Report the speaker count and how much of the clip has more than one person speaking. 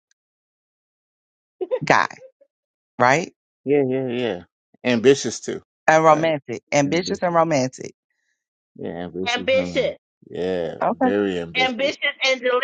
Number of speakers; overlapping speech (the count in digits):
3, about 17%